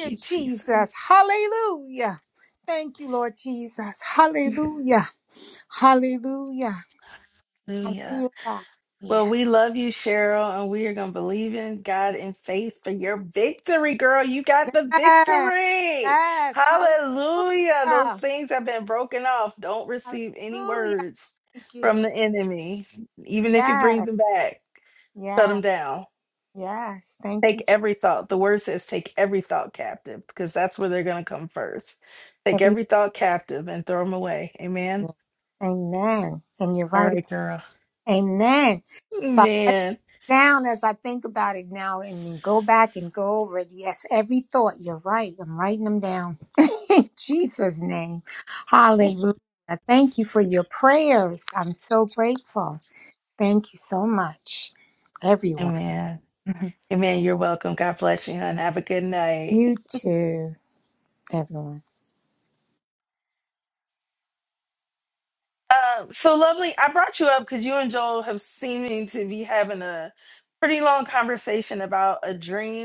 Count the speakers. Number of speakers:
two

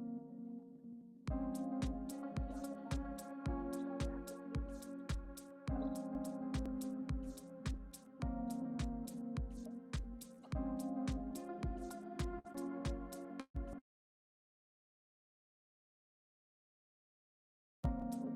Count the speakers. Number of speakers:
zero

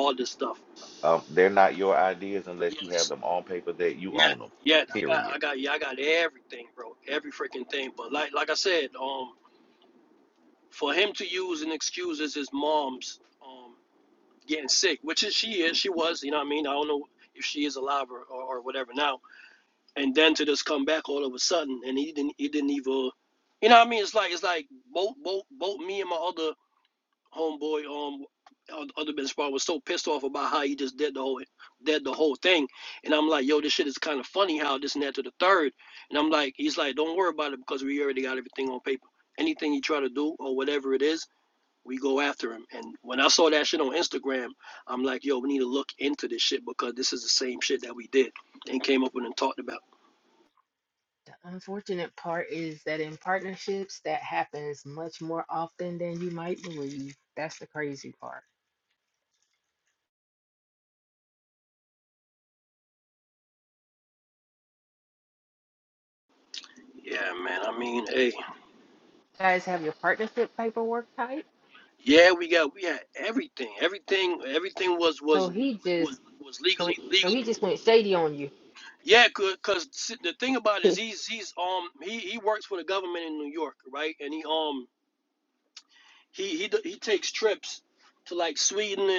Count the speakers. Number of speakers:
three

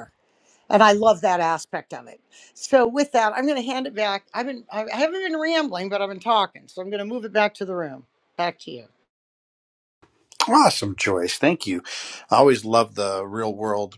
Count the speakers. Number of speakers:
two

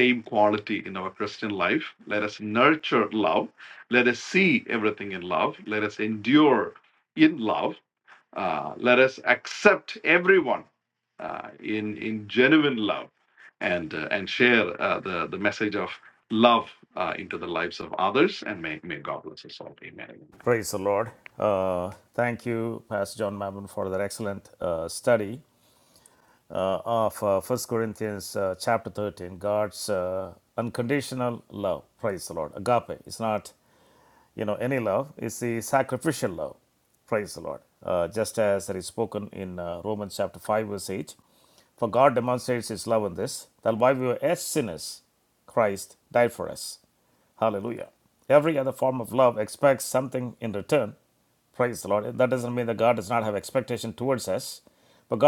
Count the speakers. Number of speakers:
two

